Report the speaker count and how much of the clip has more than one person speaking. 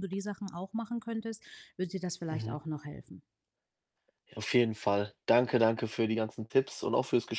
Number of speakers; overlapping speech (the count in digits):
2, about 4%